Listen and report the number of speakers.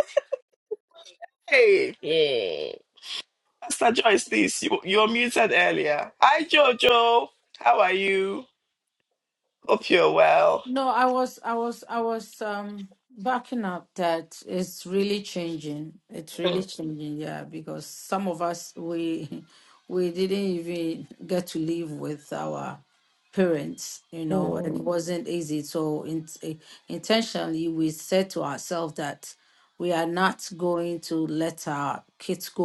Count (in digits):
2